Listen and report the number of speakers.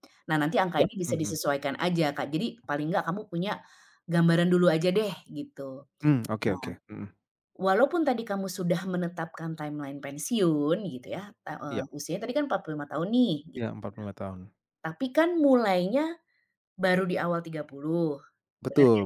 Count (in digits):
2